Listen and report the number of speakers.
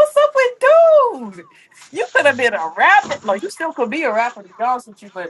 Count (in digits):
1